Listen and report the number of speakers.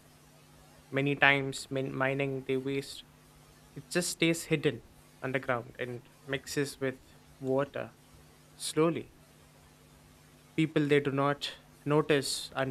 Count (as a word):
one